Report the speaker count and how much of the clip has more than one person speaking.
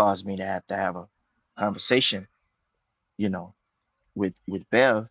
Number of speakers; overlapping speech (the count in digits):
1, no overlap